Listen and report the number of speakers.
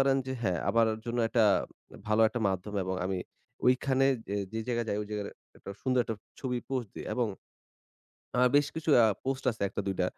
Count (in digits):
1